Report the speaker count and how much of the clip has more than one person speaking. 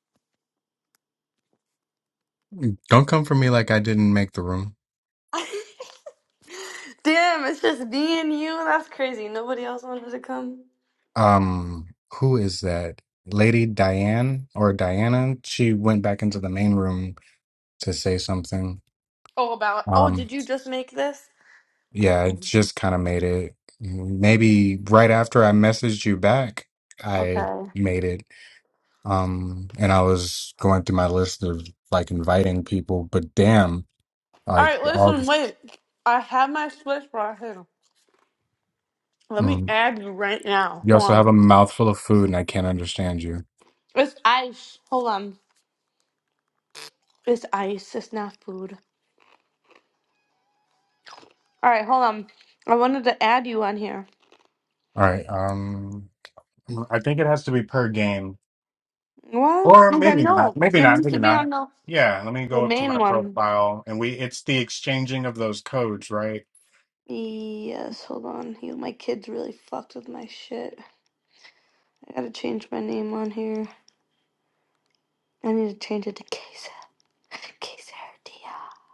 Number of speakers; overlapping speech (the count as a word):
two, about 6%